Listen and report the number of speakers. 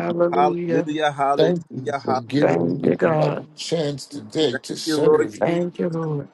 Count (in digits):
3